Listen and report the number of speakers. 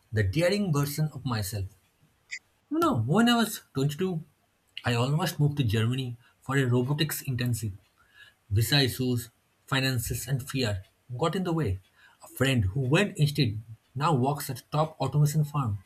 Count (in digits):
1